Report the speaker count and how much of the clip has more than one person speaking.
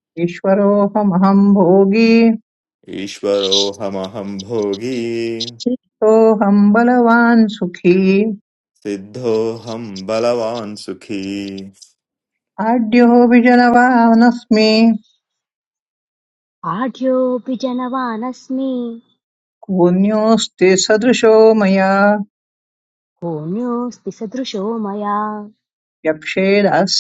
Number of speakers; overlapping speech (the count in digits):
3, no overlap